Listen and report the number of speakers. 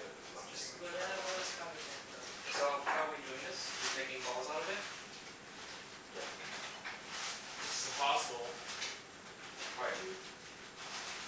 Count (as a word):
three